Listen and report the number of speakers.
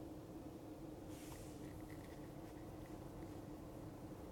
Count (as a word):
zero